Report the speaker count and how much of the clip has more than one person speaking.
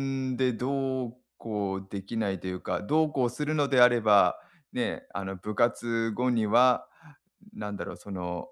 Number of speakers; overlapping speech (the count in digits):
1, no overlap